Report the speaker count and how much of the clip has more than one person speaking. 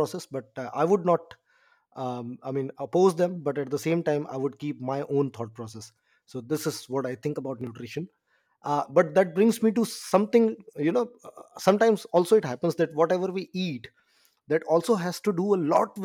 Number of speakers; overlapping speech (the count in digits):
1, no overlap